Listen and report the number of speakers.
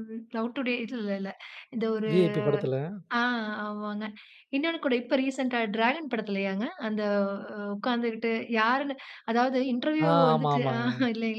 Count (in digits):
2